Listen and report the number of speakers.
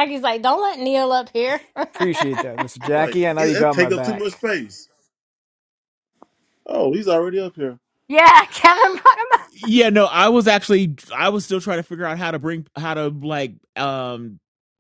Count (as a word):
four